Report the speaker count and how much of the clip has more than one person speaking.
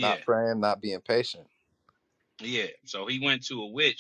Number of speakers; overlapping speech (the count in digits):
2, about 6%